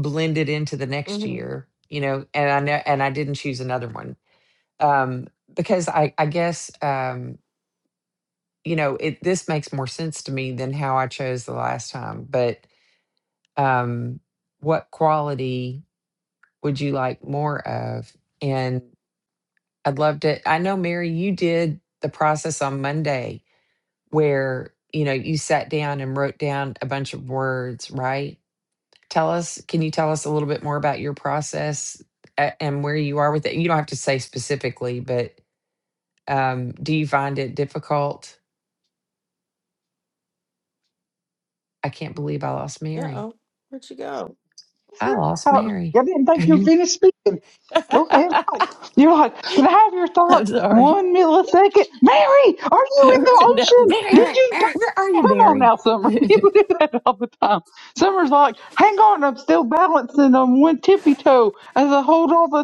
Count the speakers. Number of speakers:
three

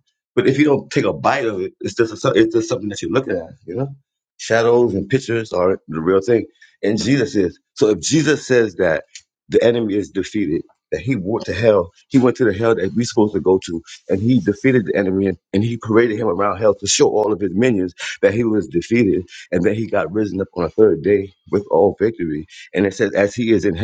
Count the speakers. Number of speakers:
one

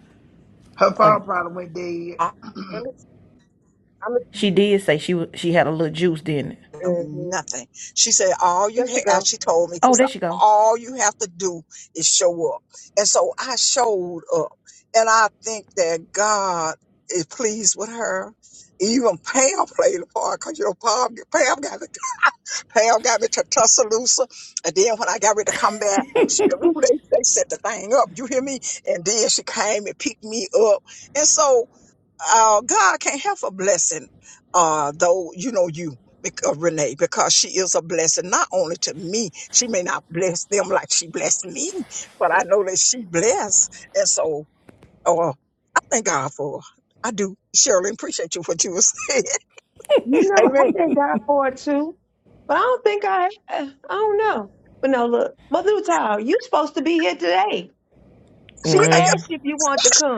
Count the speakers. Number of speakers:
four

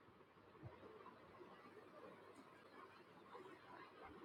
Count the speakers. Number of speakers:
zero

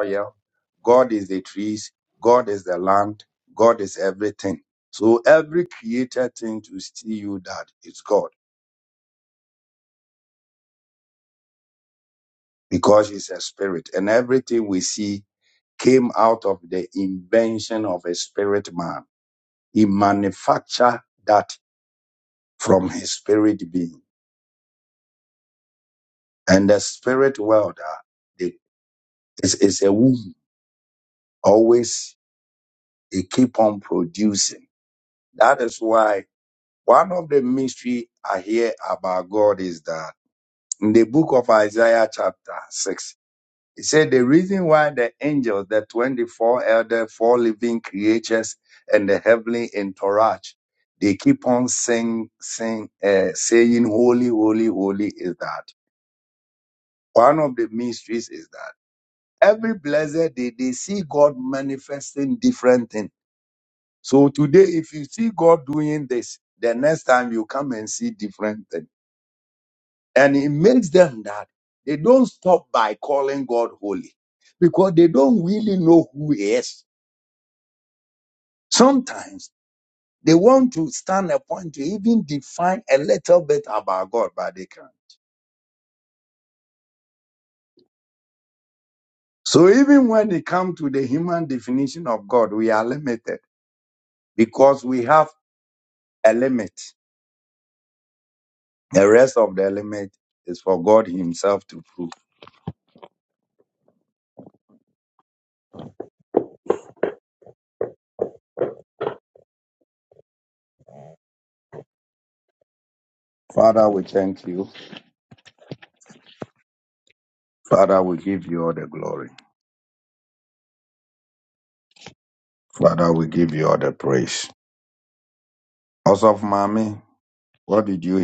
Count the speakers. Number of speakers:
one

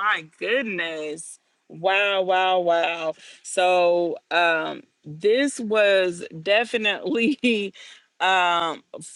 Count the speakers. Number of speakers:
one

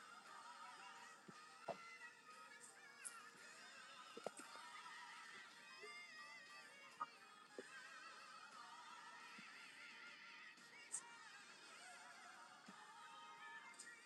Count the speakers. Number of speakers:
zero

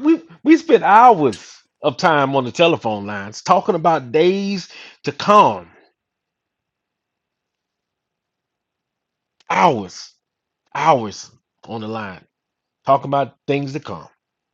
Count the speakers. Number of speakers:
one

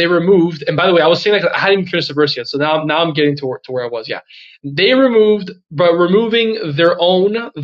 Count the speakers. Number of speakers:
one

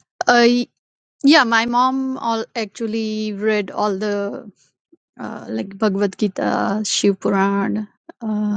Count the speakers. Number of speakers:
one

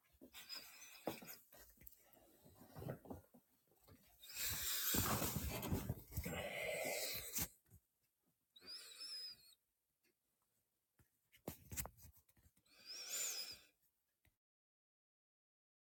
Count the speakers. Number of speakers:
zero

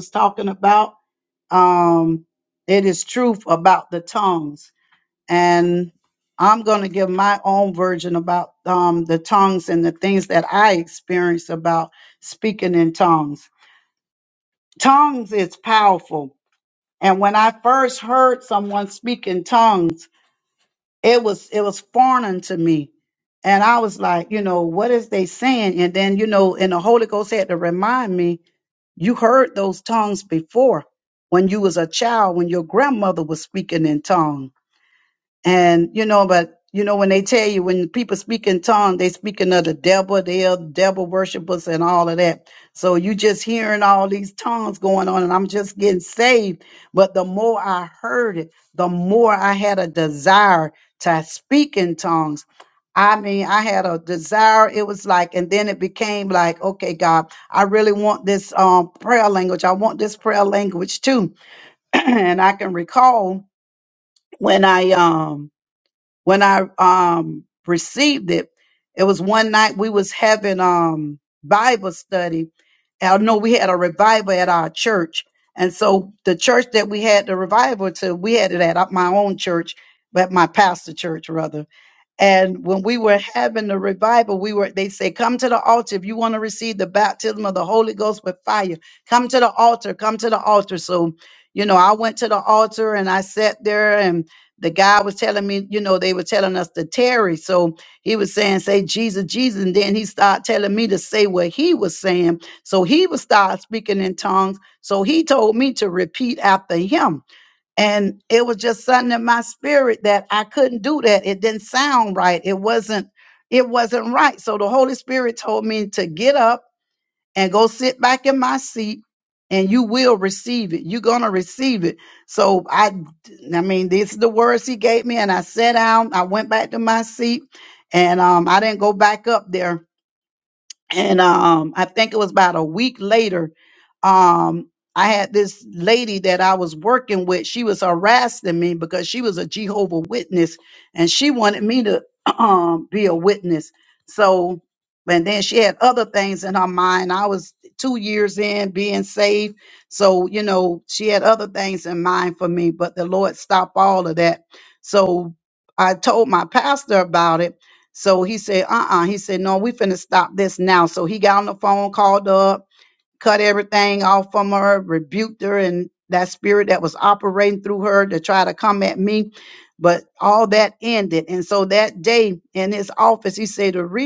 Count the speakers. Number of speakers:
one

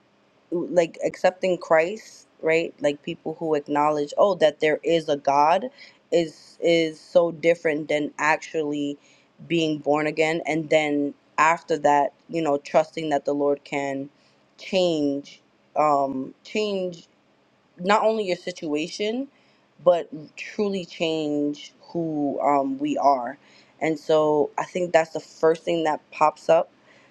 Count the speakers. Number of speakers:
one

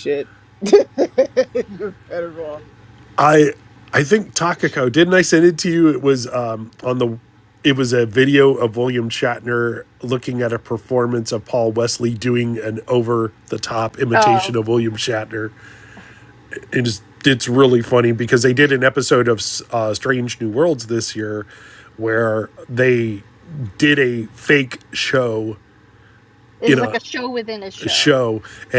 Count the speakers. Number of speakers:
three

